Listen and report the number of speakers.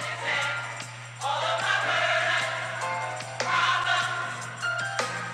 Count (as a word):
zero